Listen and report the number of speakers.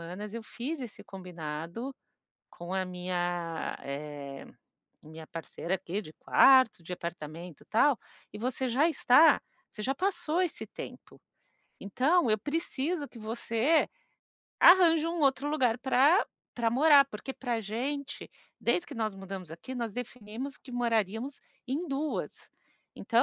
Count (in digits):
1